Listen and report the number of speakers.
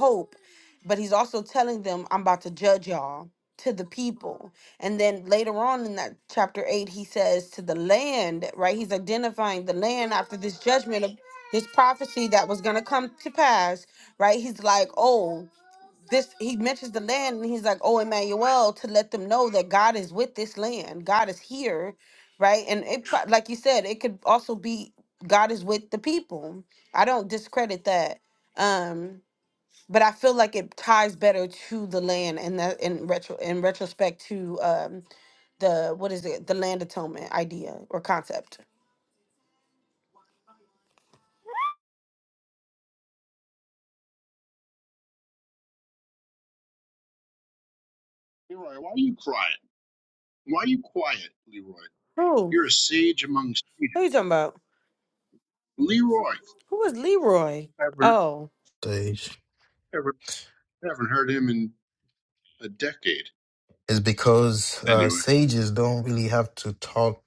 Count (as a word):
three